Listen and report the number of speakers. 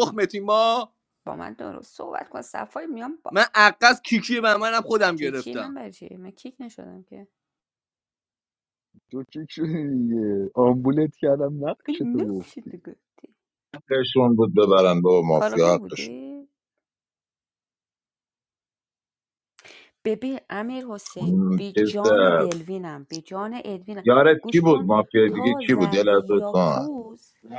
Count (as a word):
four